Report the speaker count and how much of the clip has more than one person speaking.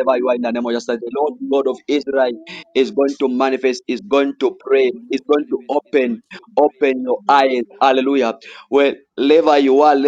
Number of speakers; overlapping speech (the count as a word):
one, no overlap